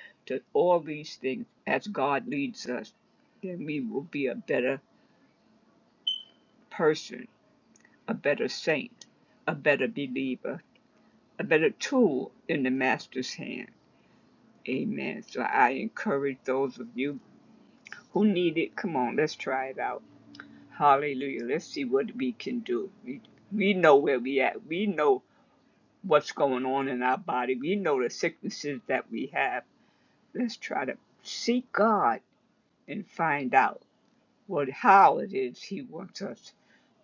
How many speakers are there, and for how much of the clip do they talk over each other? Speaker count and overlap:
one, no overlap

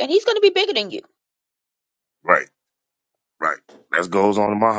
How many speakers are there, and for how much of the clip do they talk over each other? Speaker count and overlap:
two, no overlap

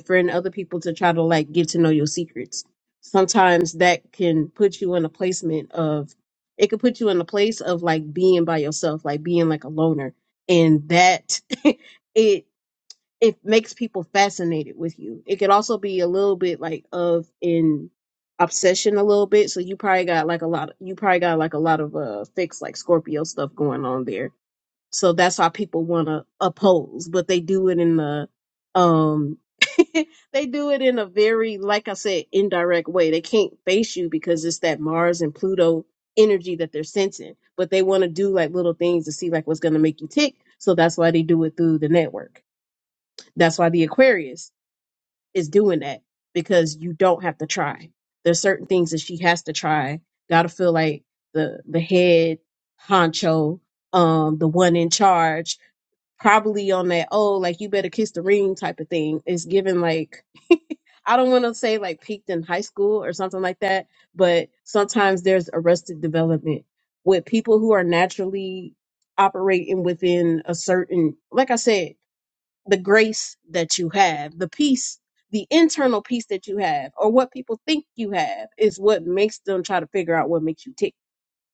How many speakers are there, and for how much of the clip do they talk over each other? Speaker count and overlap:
one, no overlap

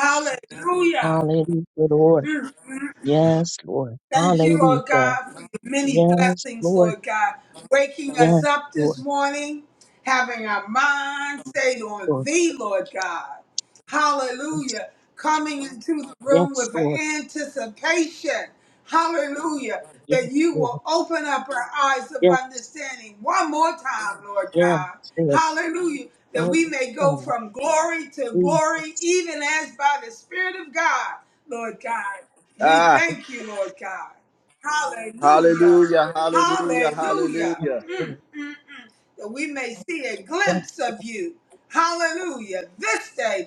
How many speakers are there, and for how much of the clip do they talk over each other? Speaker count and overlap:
three, about 18%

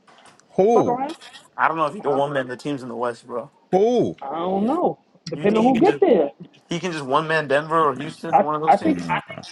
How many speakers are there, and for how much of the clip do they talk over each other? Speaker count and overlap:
three, about 21%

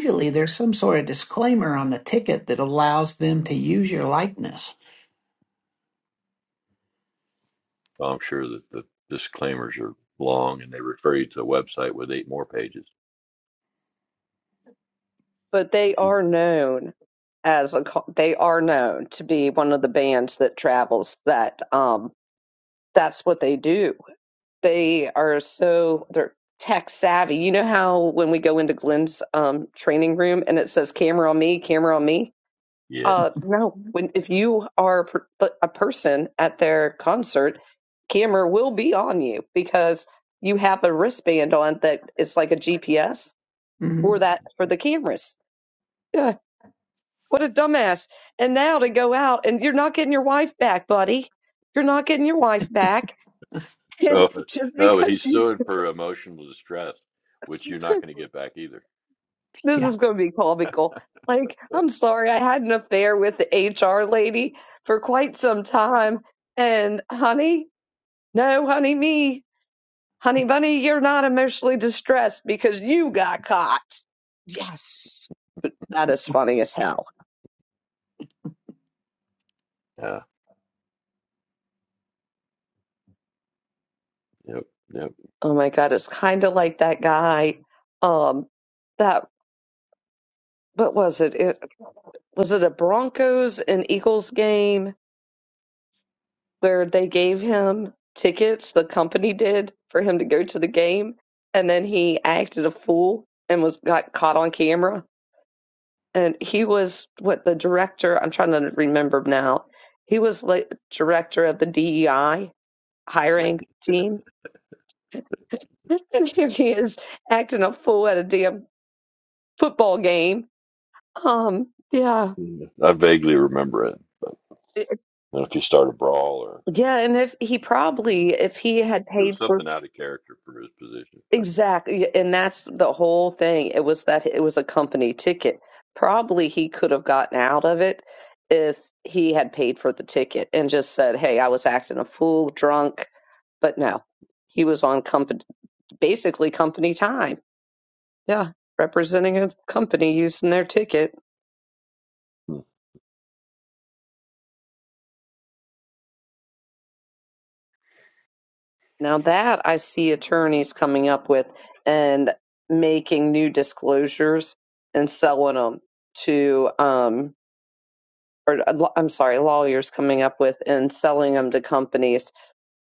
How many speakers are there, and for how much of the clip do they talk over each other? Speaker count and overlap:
three, about 1%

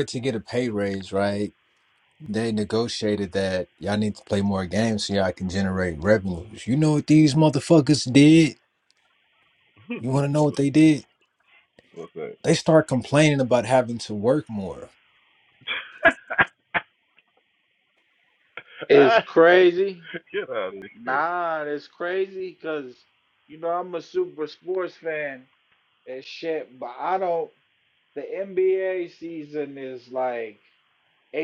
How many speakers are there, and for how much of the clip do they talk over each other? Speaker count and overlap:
three, about 2%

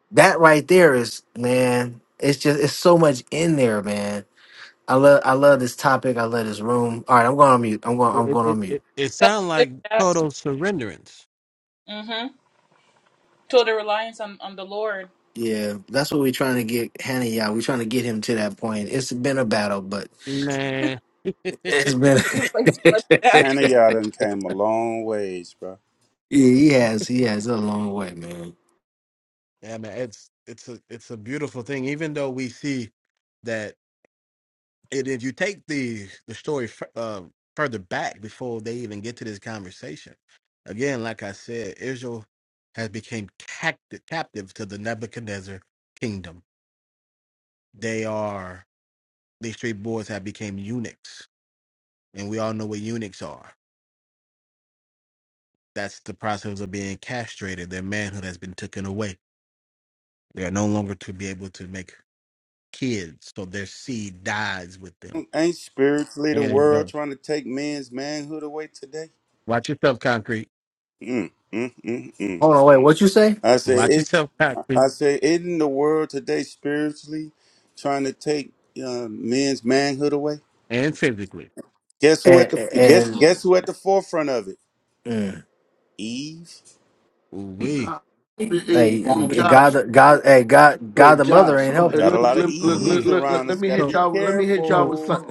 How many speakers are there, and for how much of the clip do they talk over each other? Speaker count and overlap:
five, about 9%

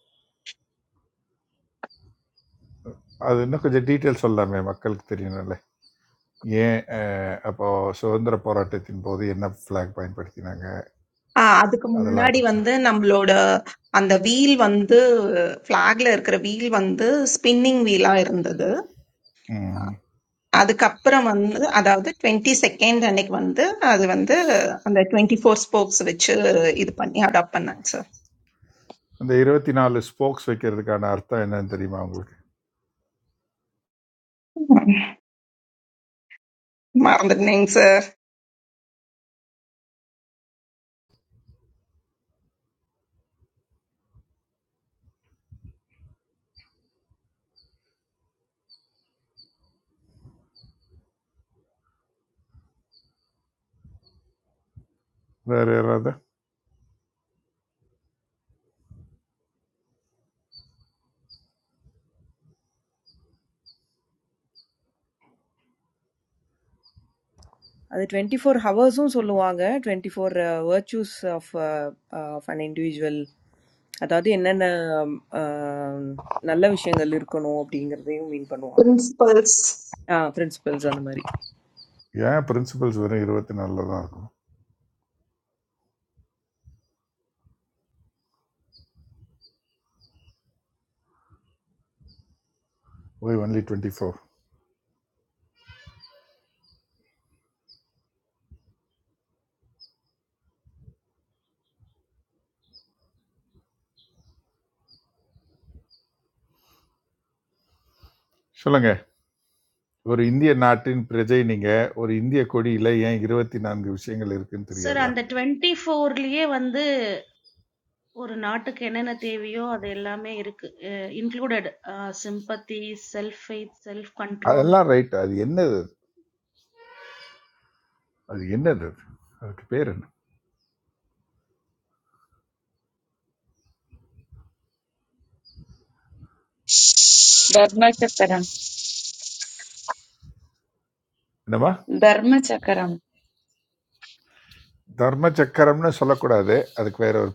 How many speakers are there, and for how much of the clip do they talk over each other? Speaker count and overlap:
five, about 1%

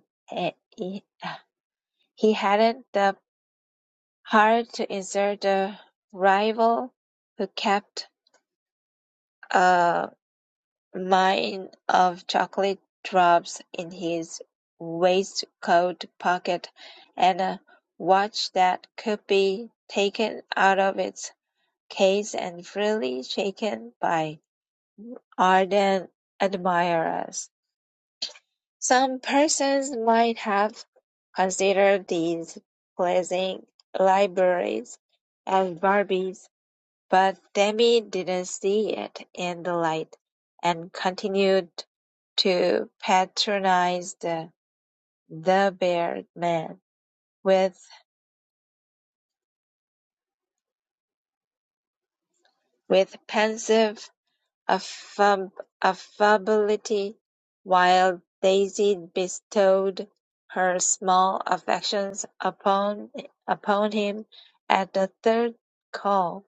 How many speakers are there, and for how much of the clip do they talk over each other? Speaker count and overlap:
one, no overlap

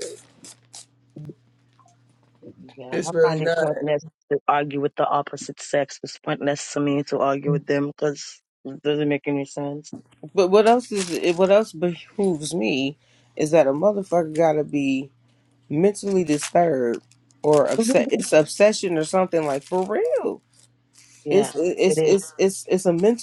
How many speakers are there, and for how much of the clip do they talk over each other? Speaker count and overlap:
two, about 8%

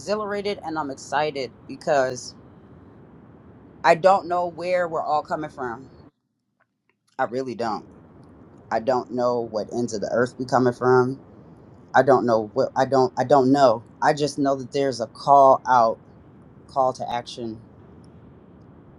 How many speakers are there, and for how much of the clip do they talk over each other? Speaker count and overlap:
one, no overlap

